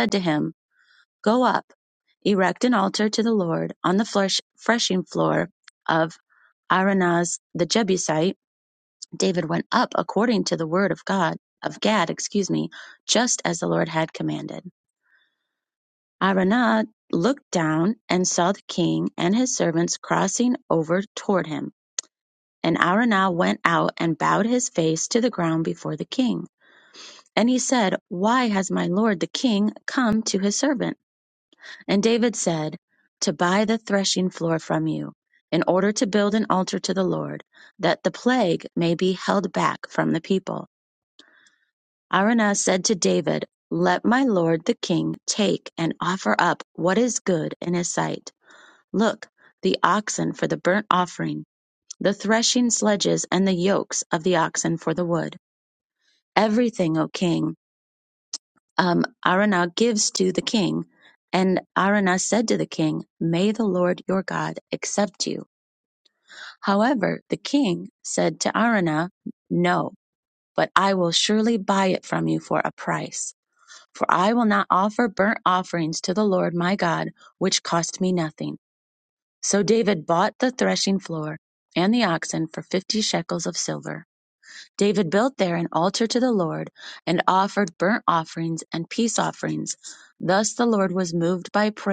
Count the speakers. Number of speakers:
1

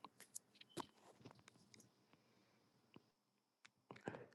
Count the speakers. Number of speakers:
0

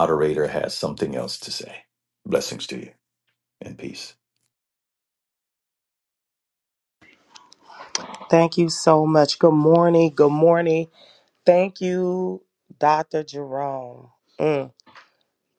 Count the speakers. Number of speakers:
2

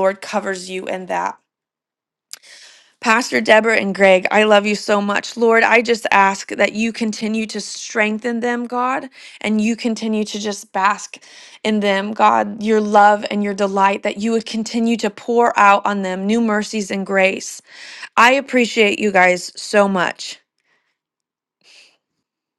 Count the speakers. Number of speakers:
1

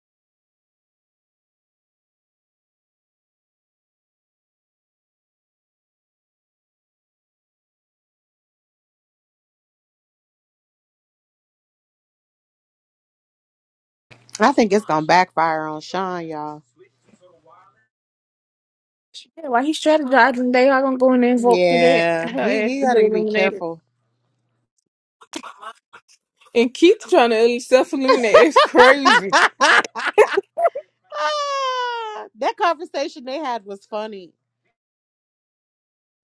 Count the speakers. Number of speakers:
2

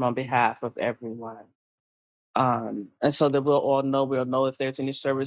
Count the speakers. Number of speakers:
1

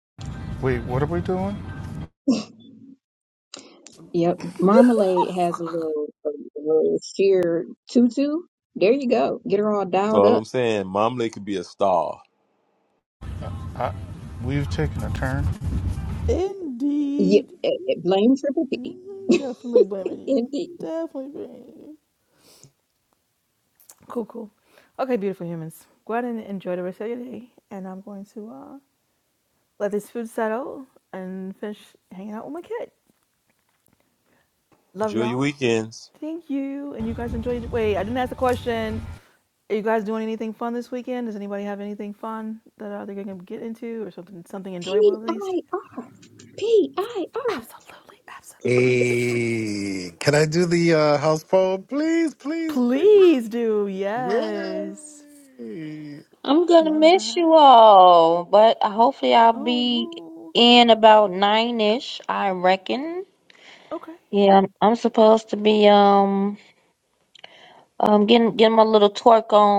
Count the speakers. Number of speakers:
6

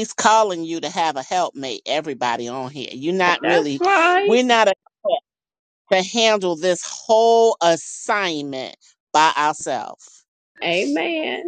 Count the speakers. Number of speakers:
2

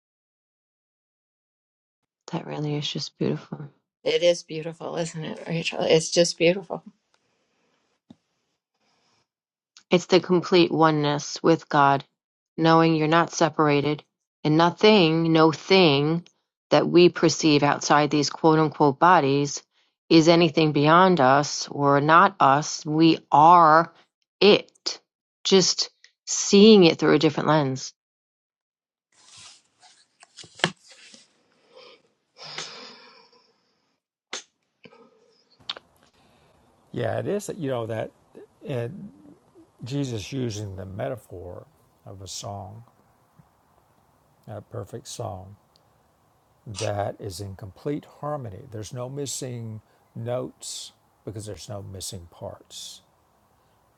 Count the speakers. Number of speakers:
3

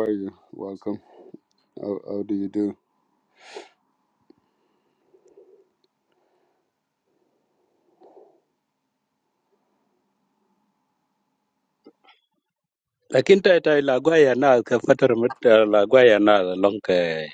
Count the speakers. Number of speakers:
2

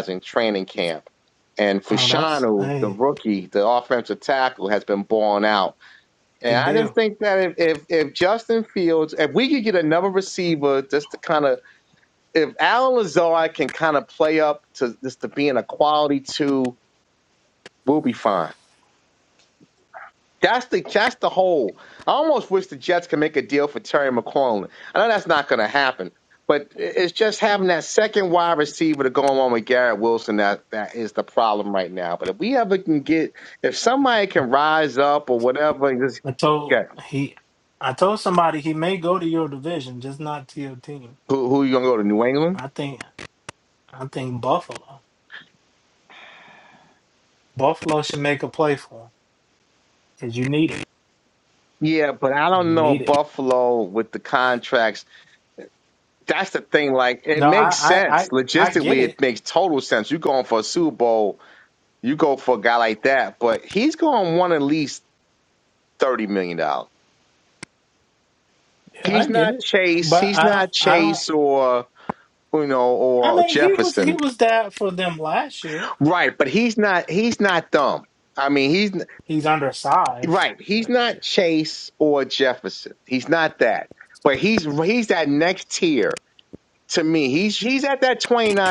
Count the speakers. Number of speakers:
2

